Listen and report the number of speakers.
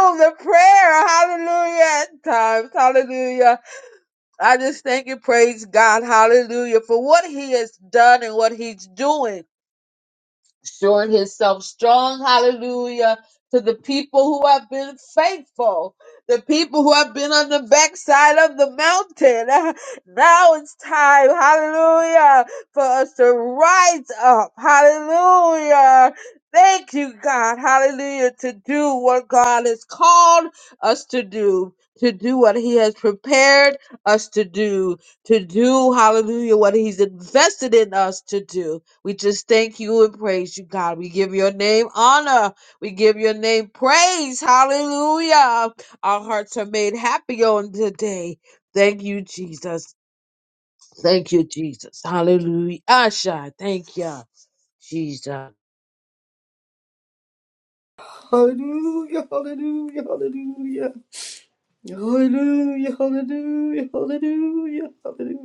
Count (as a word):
two